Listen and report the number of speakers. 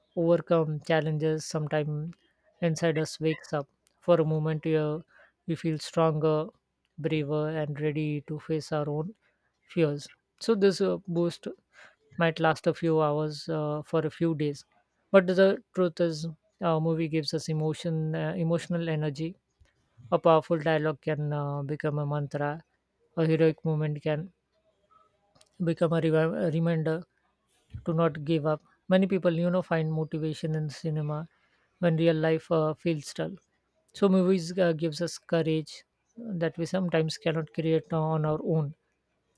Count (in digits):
1